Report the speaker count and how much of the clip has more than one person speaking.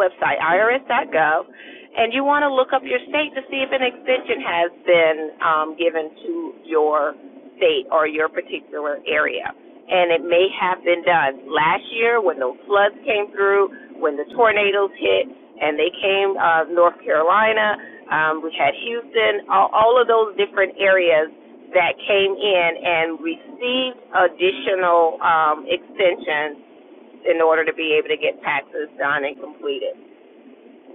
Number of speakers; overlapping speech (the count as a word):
one, no overlap